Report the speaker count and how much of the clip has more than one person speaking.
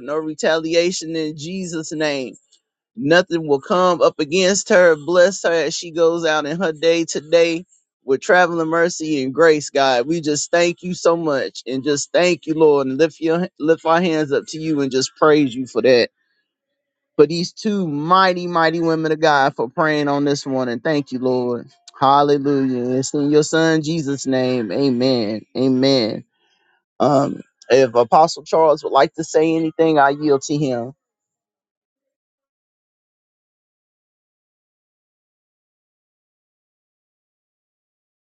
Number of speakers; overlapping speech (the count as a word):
one, no overlap